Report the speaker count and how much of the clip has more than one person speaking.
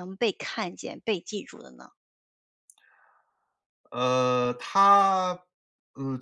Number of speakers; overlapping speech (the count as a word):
two, no overlap